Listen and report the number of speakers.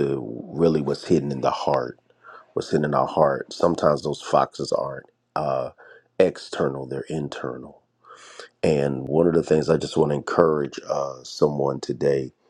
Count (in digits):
1